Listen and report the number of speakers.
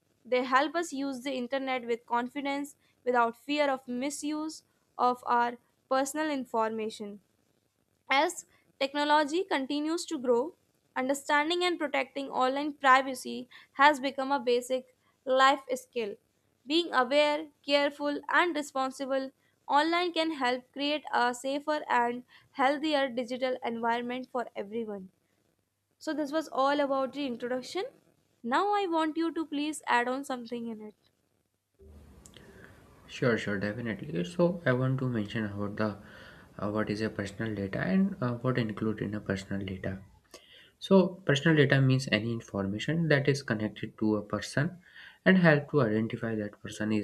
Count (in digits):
2